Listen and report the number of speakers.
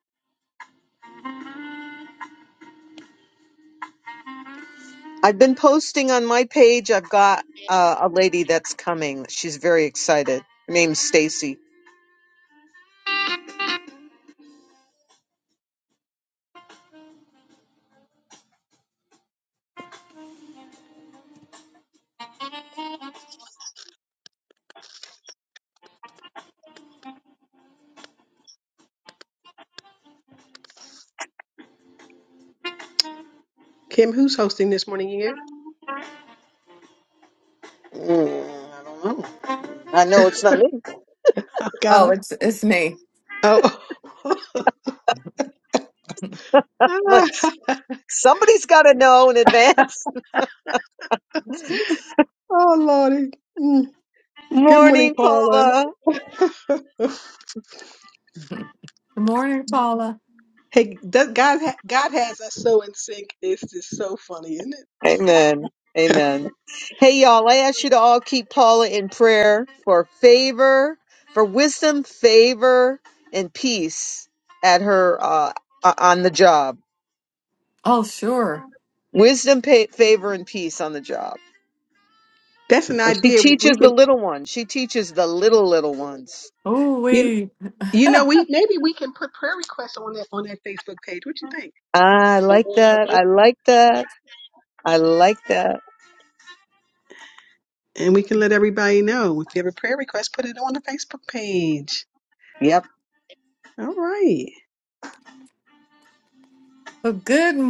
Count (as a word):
three